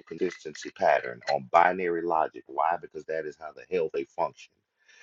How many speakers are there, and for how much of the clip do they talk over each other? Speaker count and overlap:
1, no overlap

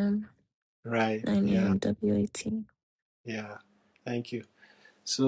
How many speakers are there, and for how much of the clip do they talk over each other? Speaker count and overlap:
2, about 10%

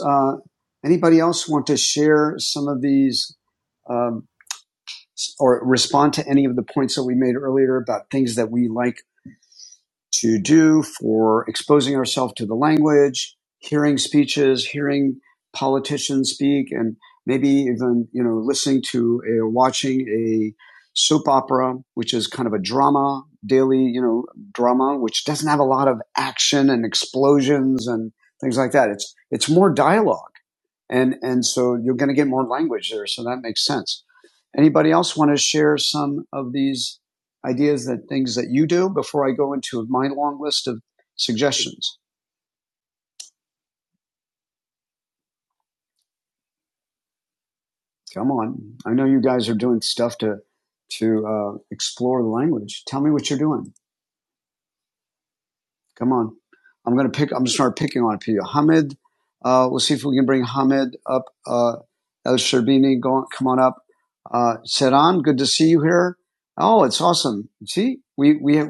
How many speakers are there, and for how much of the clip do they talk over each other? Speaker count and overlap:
1, no overlap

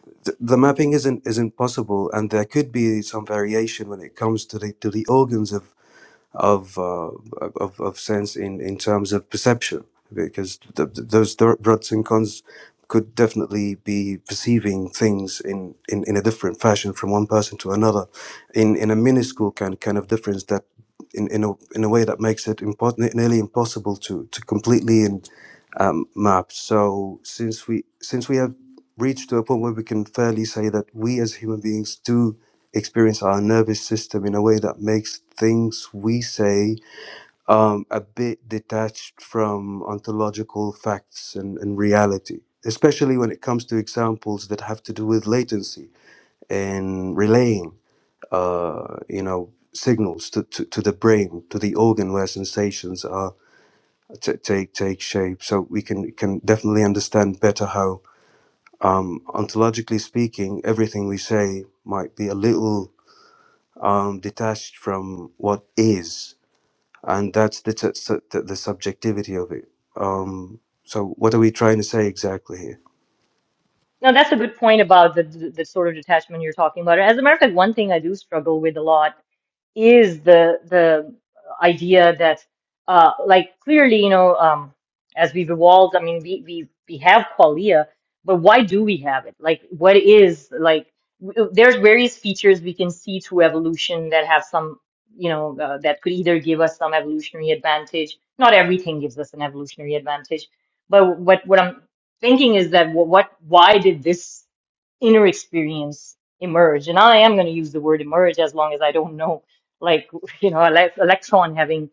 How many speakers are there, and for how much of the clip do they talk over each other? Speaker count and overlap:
2, no overlap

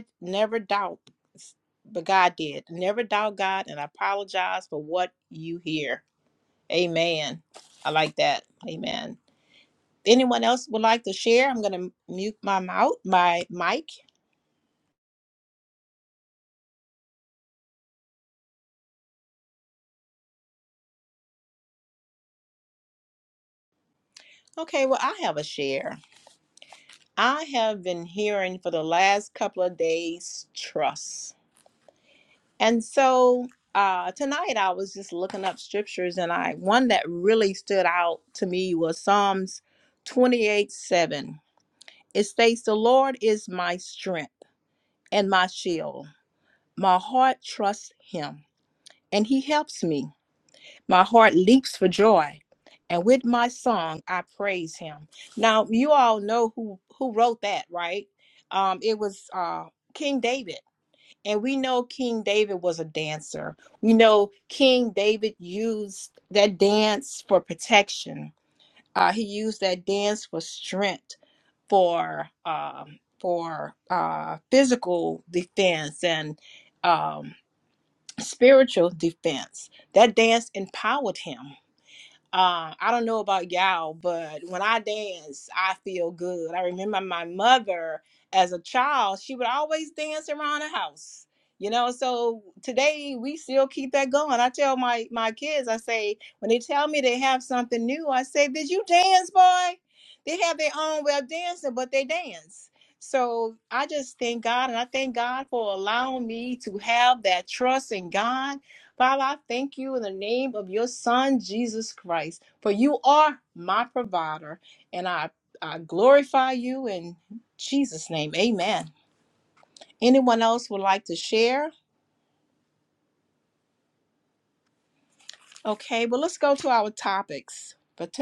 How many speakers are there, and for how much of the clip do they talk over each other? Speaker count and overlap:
1, no overlap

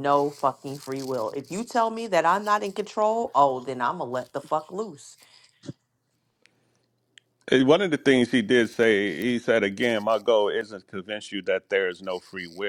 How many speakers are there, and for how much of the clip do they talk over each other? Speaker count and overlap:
2, no overlap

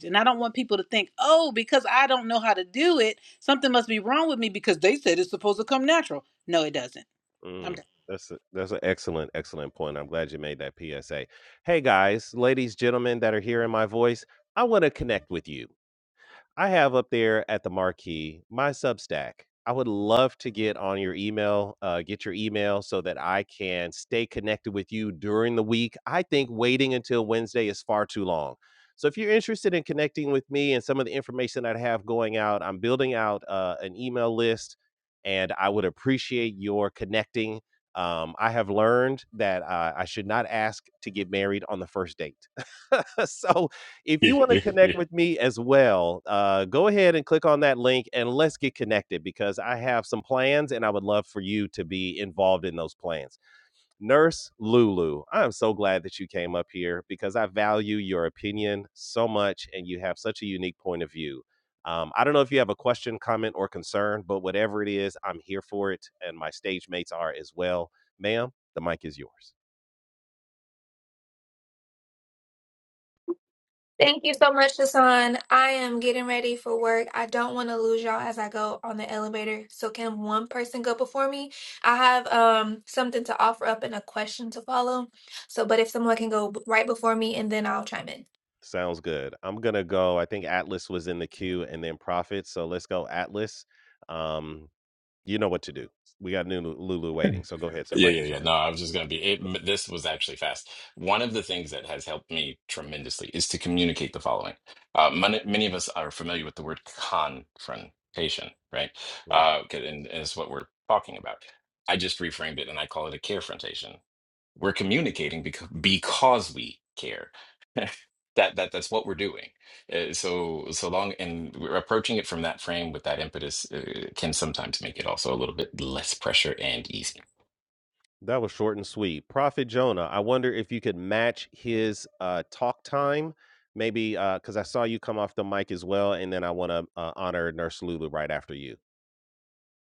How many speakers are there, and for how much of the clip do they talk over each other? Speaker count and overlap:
4, under 1%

